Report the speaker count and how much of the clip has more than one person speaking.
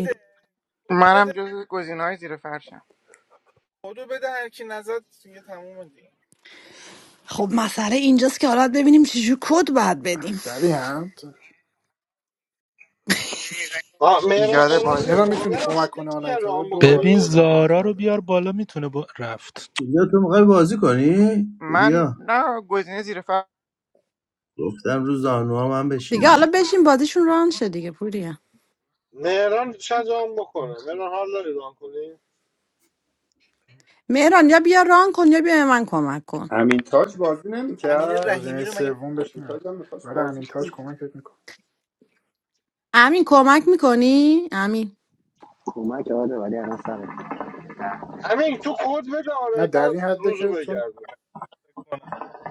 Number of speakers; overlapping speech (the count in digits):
9, about 15%